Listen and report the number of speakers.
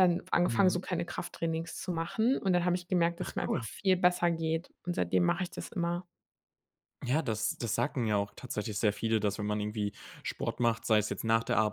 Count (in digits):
2